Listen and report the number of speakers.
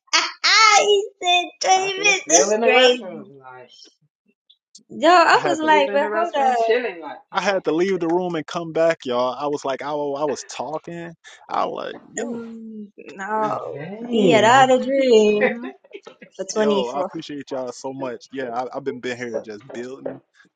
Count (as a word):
three